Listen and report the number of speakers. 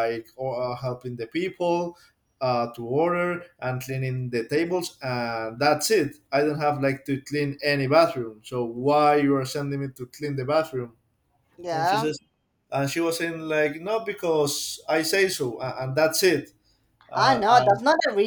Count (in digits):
2